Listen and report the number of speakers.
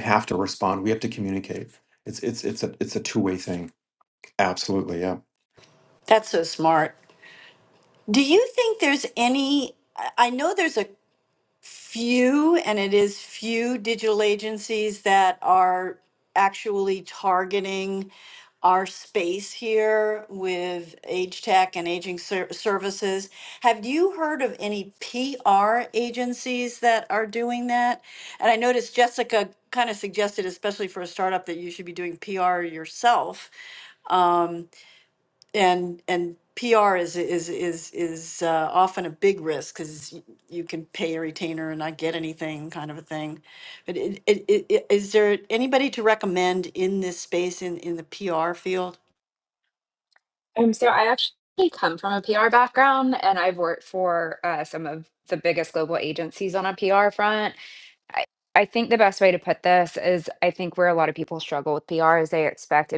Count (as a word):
three